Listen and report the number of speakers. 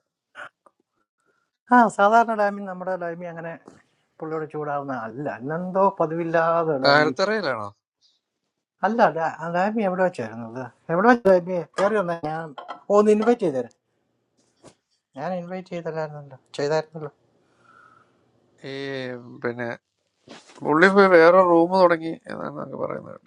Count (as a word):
two